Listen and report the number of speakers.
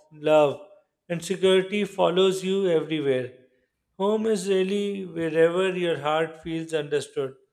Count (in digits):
1